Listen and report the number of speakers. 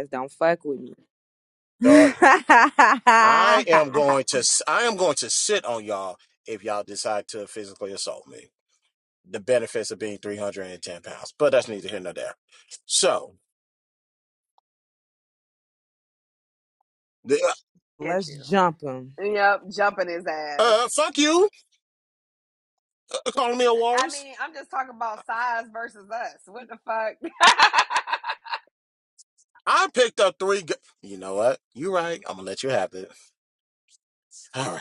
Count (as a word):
three